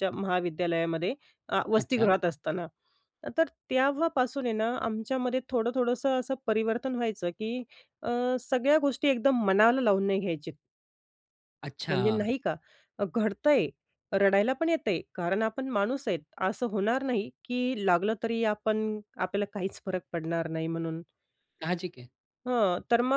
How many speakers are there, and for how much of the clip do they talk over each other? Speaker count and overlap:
two, about 3%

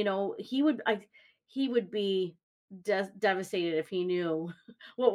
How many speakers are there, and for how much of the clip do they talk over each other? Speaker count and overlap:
one, no overlap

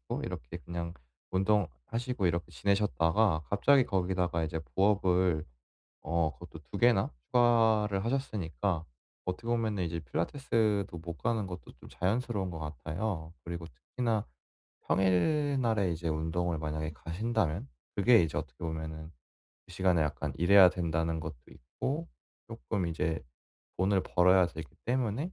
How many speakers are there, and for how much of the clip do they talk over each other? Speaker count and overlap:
one, no overlap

